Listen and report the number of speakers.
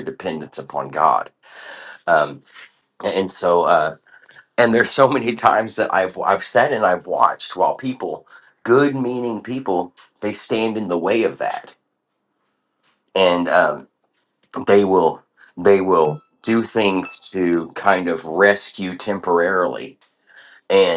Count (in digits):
1